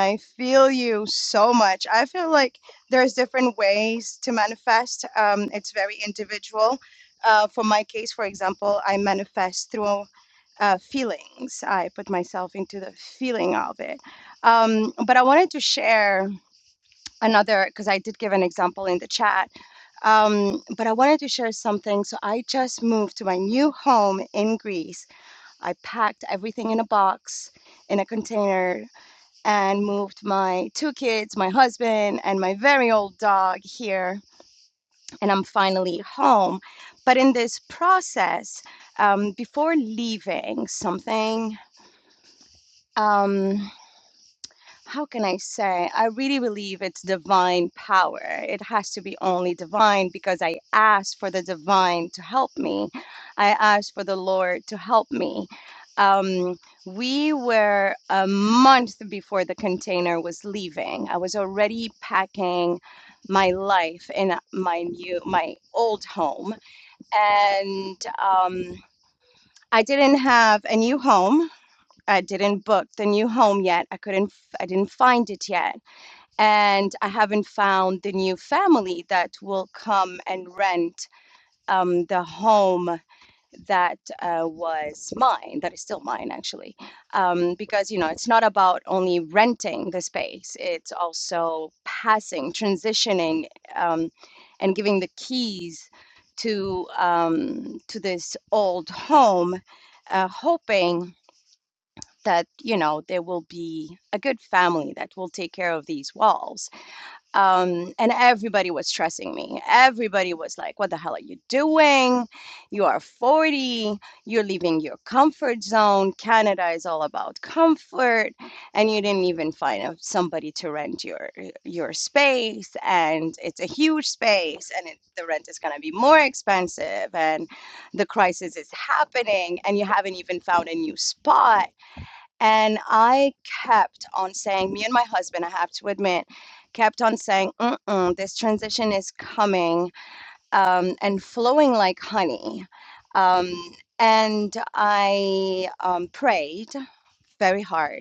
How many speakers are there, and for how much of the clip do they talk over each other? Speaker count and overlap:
one, no overlap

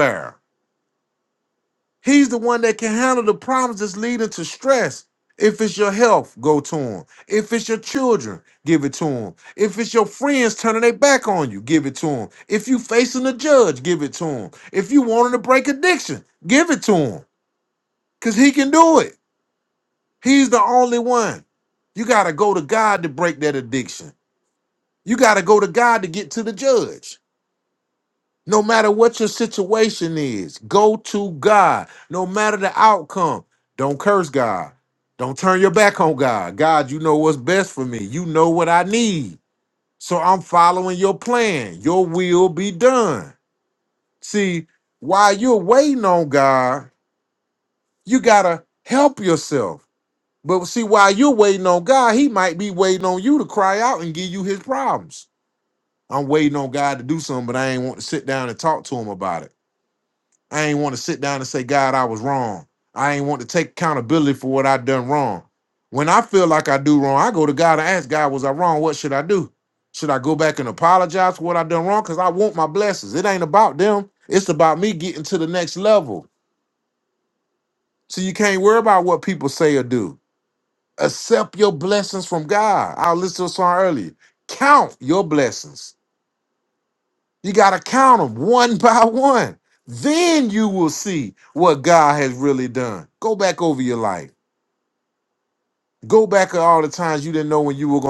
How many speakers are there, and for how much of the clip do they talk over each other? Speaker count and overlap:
one, no overlap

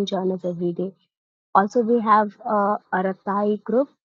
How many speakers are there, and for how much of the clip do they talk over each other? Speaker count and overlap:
one, no overlap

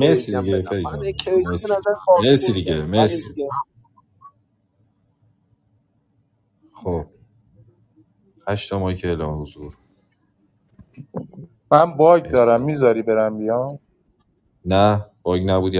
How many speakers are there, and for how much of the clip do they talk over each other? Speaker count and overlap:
three, about 19%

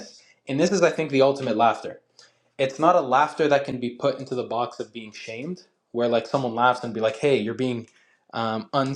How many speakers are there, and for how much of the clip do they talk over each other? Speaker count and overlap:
one, no overlap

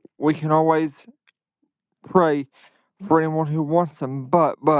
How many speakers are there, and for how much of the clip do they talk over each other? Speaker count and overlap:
one, no overlap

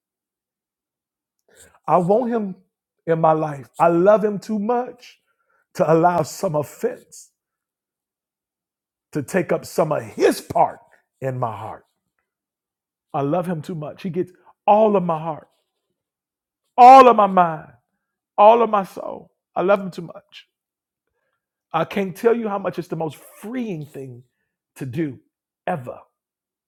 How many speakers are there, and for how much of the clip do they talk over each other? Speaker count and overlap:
one, no overlap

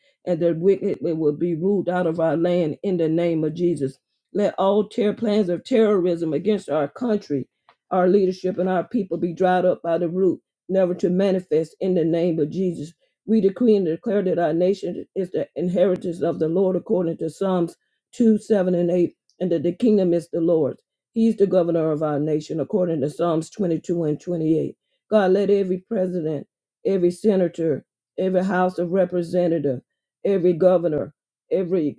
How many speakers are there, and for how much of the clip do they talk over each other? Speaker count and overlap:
one, no overlap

